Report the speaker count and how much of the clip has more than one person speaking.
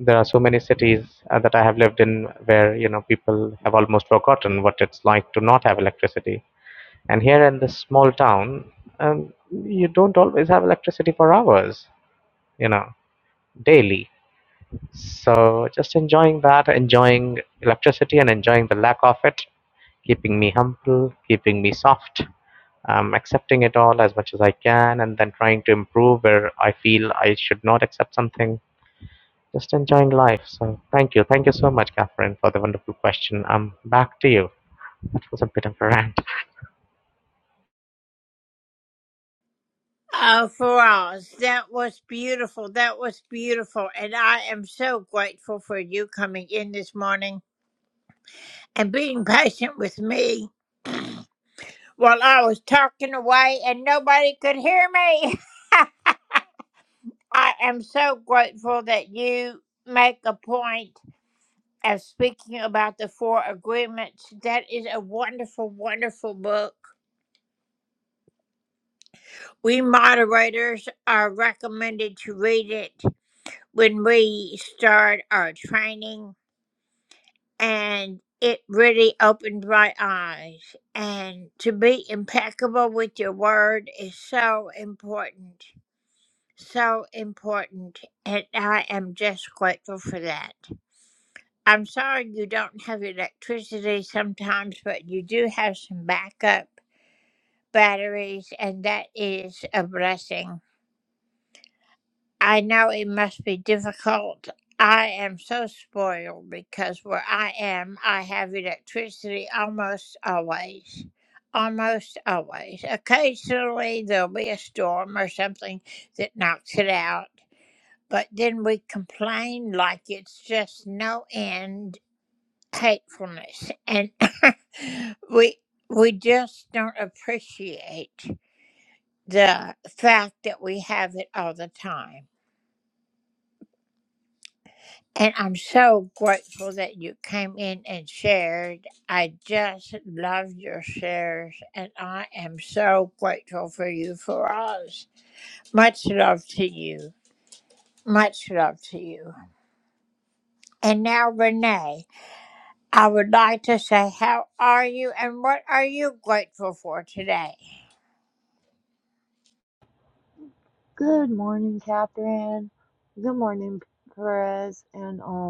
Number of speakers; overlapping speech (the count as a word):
three, no overlap